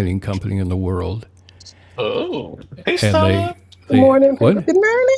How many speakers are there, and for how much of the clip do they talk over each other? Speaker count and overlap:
three, about 26%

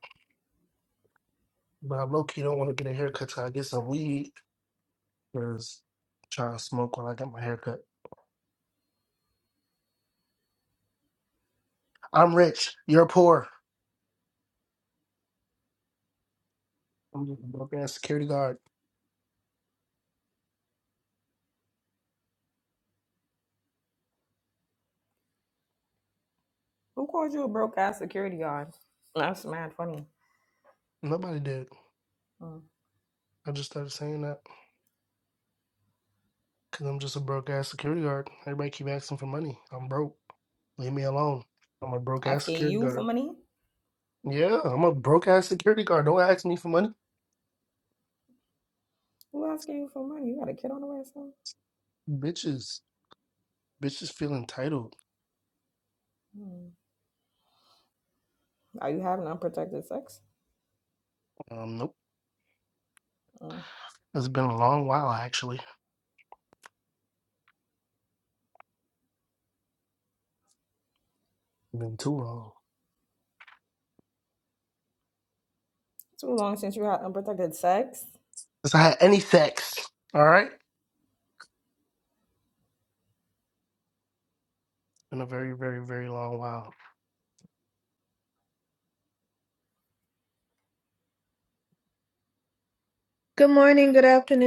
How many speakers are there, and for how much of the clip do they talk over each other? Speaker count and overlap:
three, about 1%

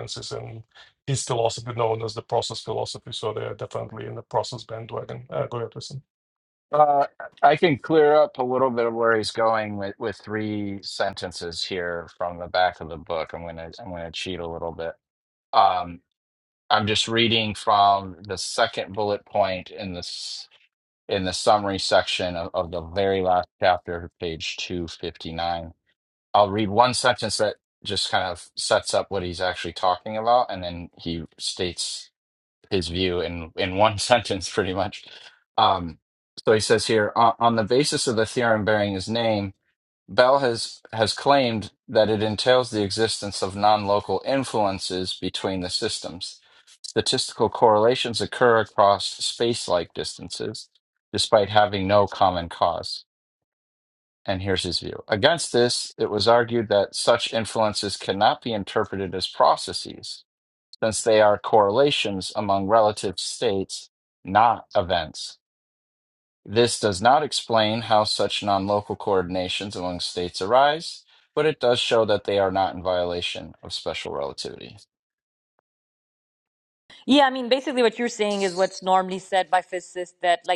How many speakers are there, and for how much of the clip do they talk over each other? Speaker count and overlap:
three, no overlap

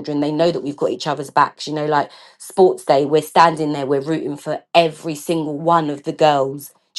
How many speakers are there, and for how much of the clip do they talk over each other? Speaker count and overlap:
one, no overlap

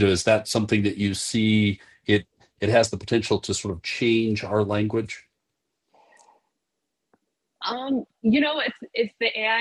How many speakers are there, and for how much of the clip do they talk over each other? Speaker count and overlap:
two, no overlap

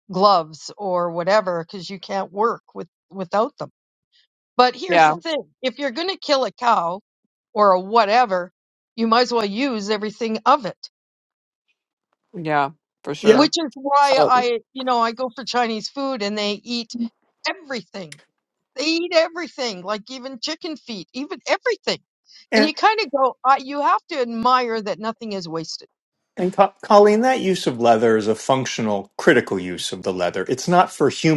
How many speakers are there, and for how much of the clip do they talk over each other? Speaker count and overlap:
three, about 3%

